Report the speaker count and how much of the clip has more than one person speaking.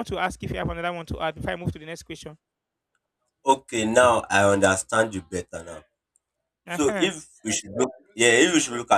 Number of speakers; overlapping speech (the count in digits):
2, about 4%